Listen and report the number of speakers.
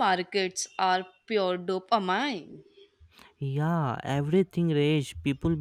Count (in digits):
2